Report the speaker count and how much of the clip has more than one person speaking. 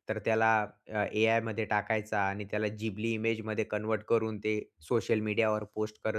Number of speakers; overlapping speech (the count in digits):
1, no overlap